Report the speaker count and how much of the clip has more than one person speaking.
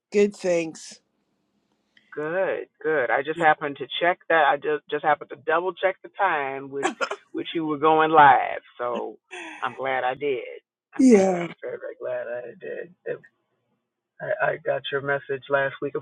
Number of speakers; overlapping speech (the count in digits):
2, about 3%